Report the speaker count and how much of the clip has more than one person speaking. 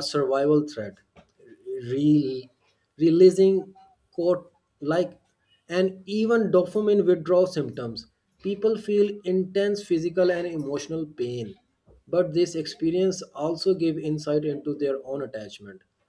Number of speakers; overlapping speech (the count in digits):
1, no overlap